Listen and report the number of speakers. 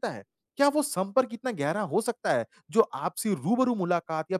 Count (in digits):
1